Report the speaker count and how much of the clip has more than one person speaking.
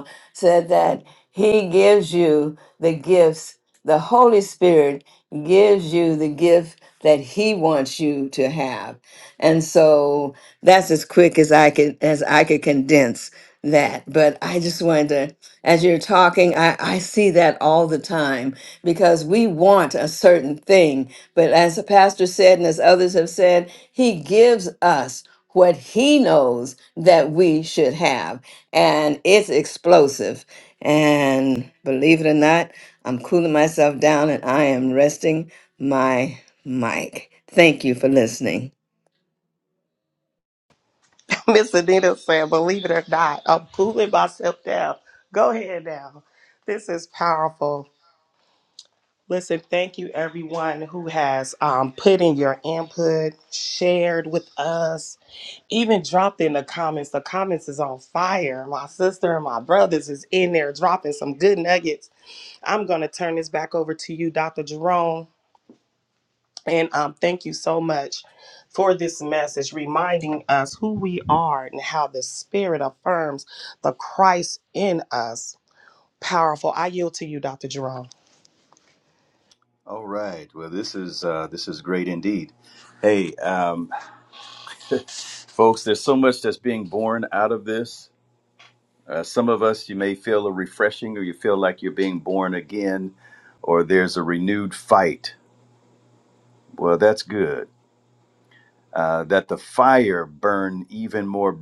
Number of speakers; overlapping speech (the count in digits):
3, no overlap